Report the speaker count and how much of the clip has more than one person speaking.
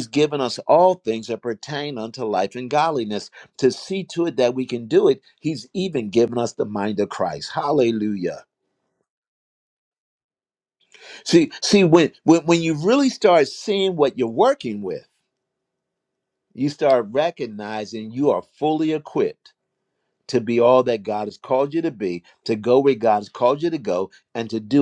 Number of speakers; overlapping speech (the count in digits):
1, no overlap